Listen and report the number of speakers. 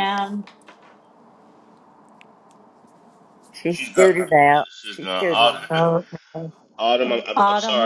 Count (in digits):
3